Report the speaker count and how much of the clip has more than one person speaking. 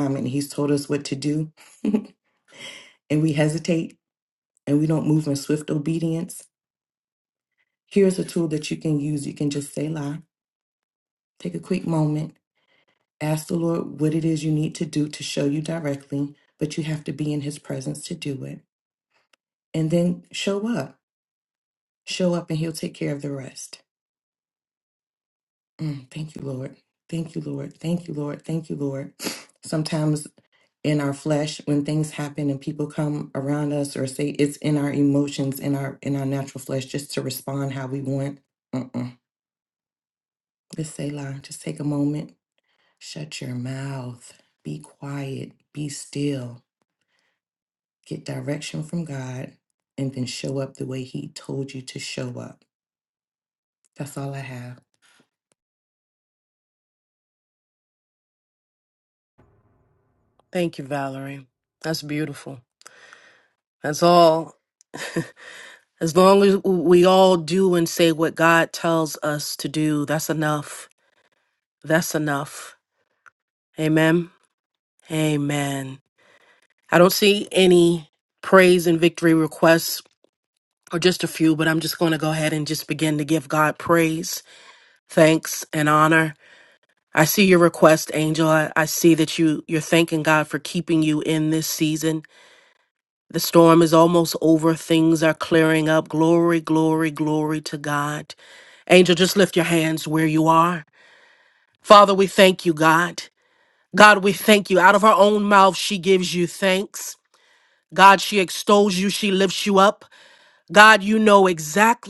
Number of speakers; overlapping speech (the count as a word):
two, no overlap